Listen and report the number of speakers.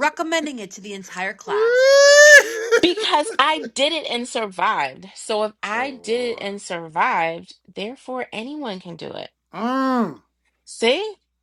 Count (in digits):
3